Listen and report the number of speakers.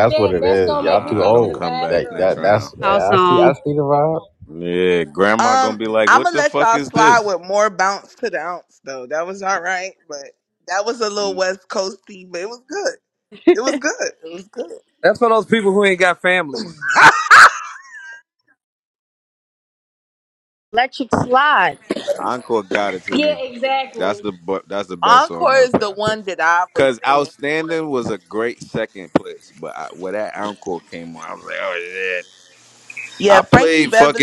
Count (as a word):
six